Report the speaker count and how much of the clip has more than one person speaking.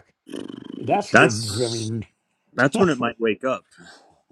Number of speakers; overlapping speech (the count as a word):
two, about 19%